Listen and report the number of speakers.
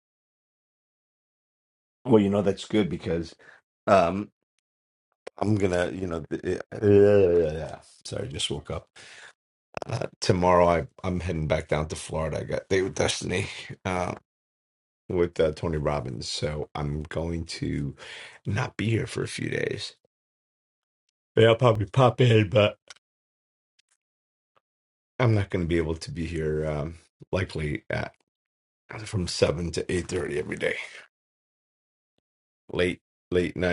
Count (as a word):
one